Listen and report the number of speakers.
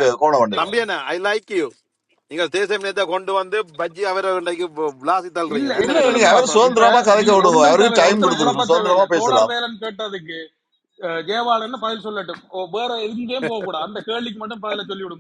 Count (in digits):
3